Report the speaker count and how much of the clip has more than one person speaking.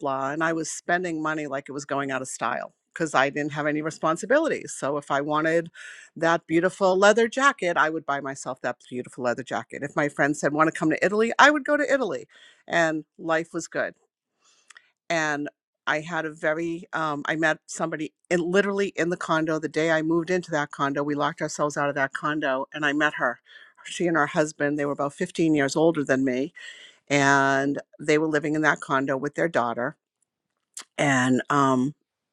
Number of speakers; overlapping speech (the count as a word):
one, no overlap